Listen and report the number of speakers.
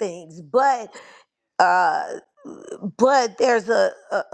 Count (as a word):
one